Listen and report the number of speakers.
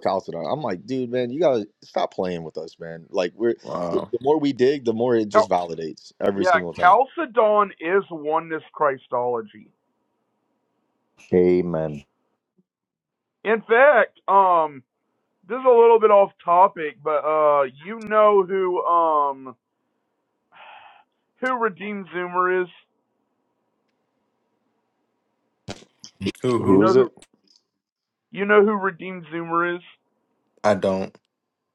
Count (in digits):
3